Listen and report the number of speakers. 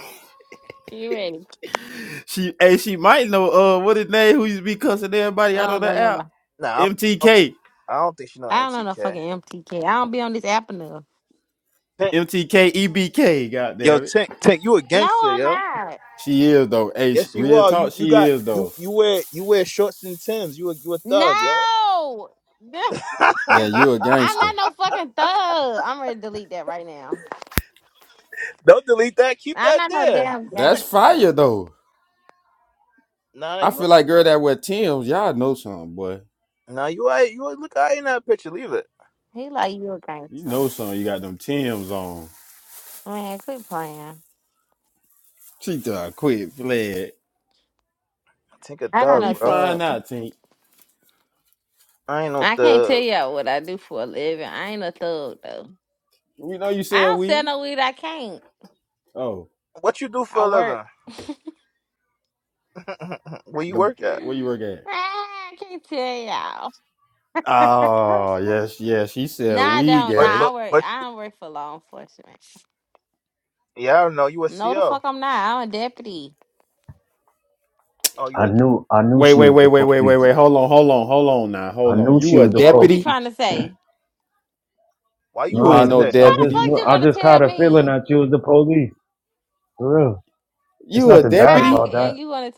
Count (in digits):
4